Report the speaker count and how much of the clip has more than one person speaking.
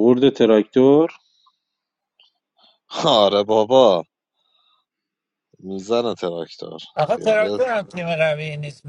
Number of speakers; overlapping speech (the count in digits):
3, about 4%